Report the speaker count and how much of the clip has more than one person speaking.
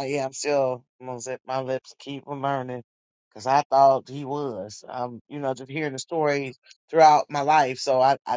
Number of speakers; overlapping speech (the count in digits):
1, no overlap